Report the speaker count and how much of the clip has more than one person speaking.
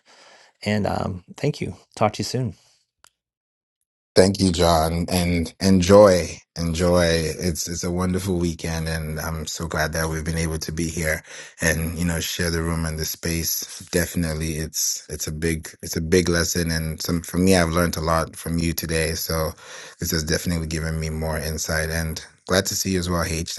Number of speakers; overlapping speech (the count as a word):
two, no overlap